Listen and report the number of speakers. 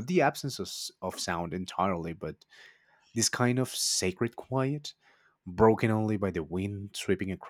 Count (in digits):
1